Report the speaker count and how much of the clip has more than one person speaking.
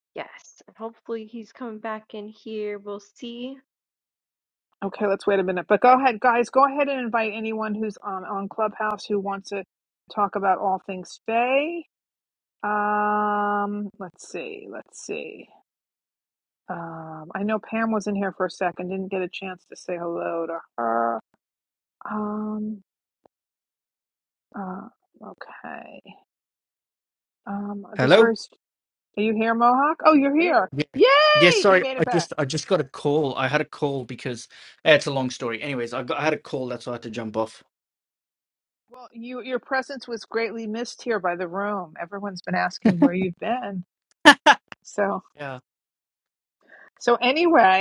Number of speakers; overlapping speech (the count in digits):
3, about 3%